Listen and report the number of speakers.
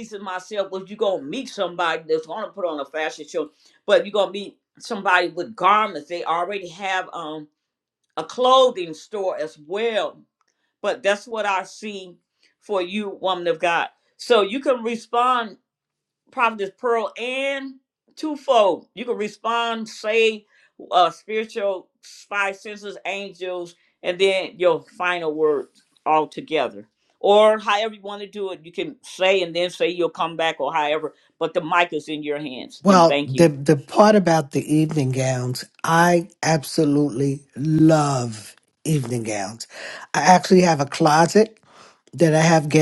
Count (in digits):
2